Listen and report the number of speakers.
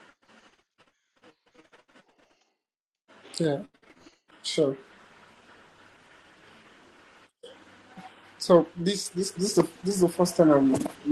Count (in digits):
1